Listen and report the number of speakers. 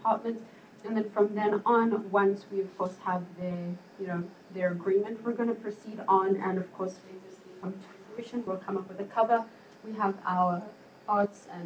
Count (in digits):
1